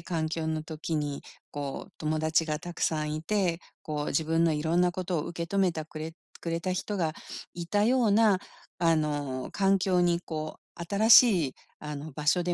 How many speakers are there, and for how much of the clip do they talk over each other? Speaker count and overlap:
1, no overlap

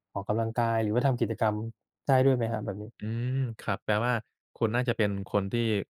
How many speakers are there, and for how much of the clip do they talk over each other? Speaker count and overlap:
2, no overlap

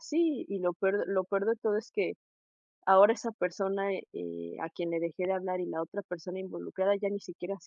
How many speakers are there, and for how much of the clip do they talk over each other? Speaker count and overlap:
1, no overlap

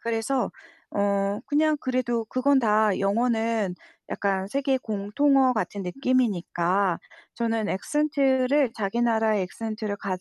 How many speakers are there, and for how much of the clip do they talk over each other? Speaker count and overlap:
1, no overlap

